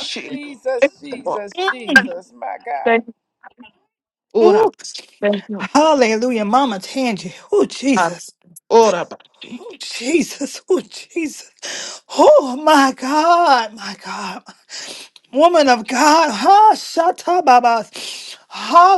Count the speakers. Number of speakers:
3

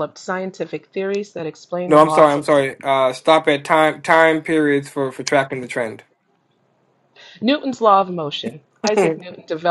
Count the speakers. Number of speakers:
2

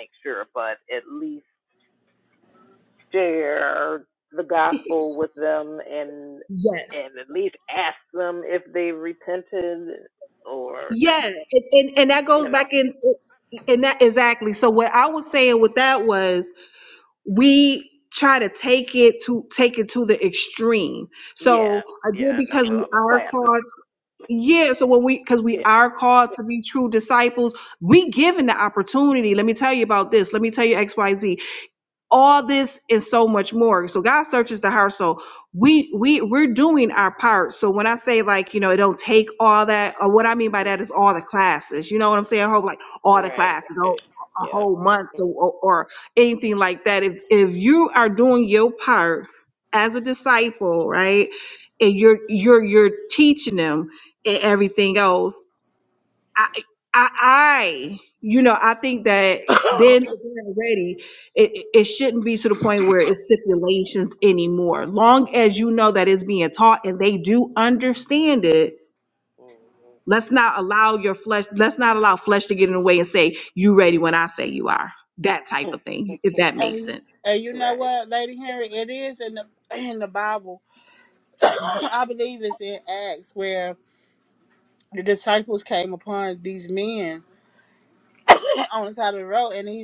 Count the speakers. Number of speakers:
3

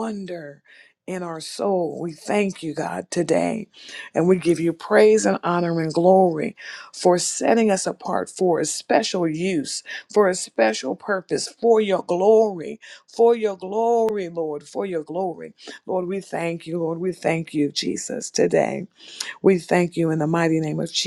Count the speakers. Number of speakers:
1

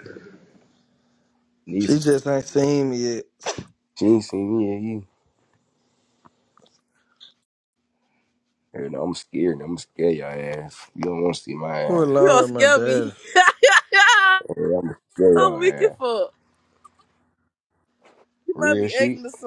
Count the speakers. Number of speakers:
3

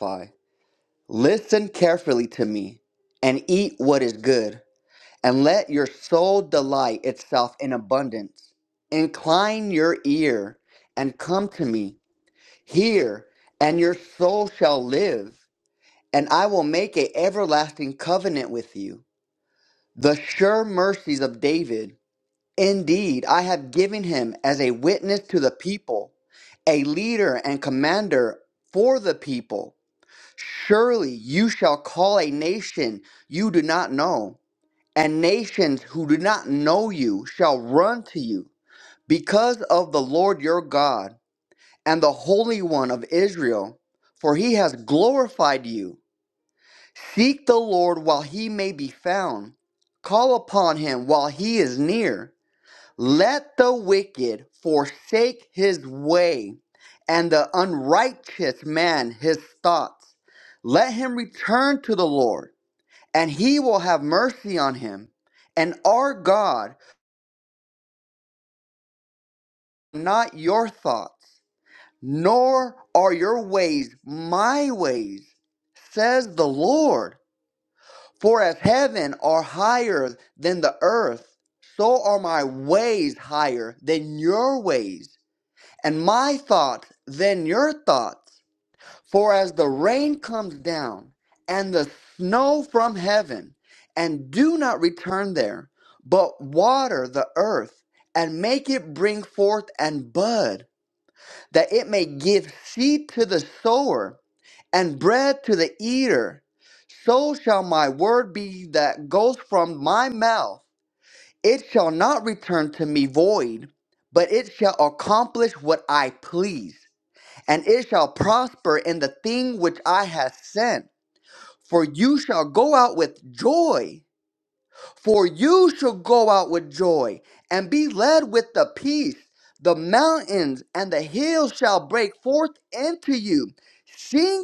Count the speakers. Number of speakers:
1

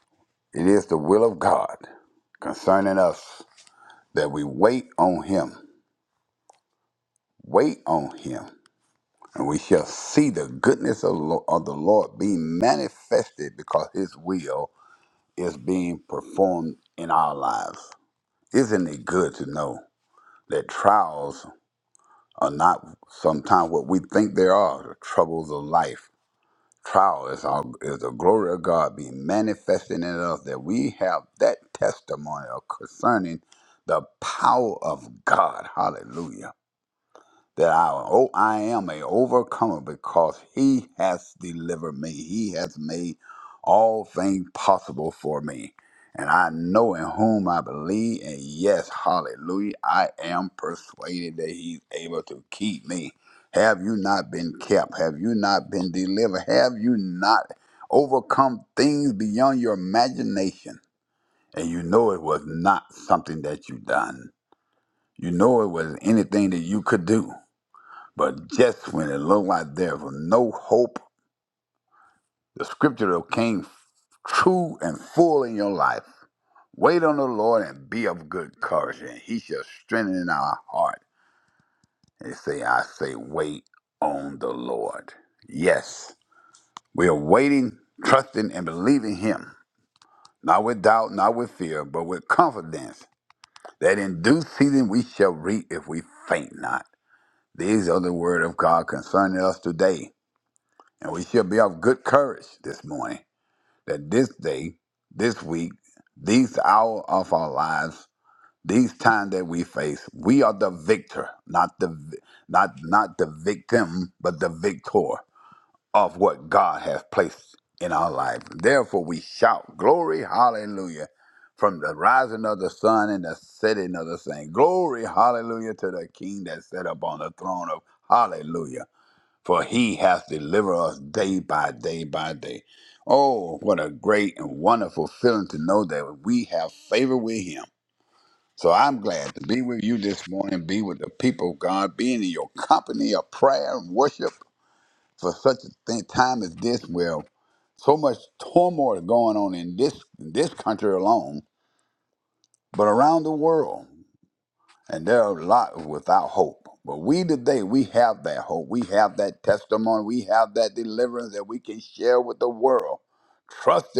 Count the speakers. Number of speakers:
1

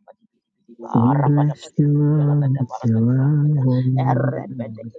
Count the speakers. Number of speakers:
2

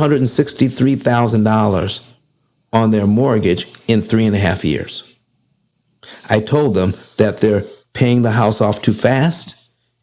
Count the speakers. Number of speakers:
1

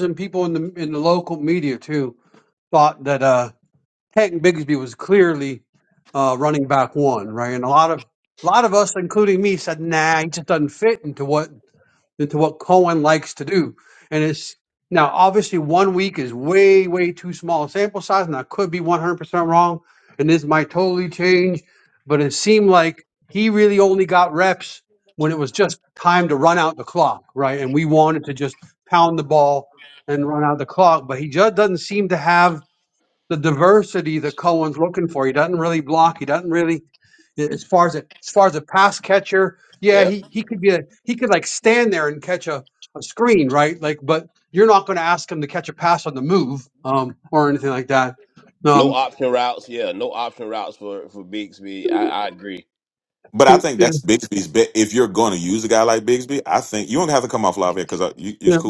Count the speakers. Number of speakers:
3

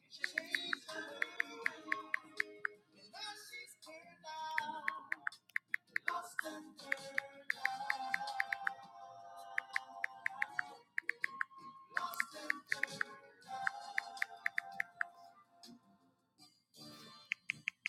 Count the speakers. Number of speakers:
0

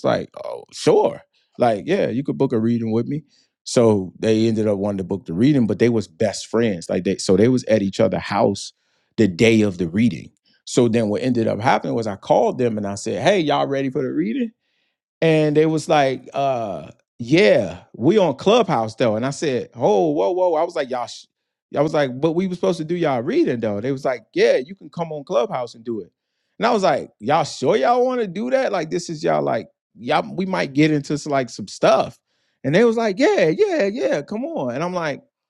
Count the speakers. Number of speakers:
1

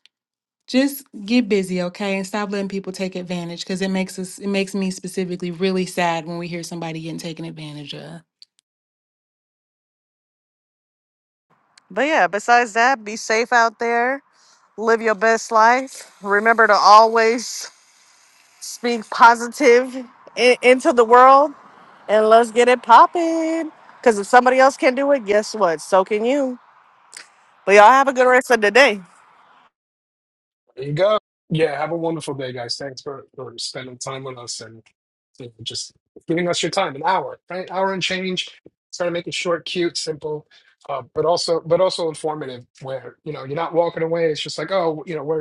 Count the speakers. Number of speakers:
3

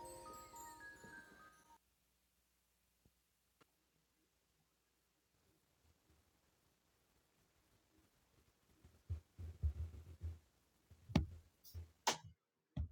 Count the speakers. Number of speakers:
0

